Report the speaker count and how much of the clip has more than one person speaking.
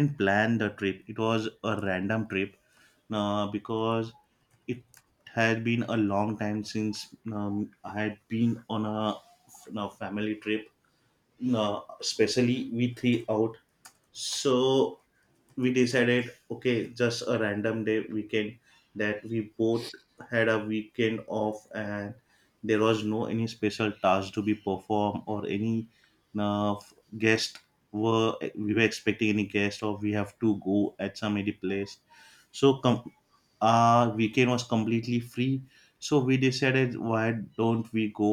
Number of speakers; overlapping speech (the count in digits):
1, no overlap